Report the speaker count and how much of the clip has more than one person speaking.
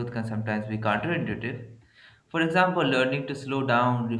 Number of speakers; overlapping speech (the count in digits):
1, no overlap